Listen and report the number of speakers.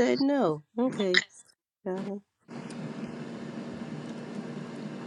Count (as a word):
one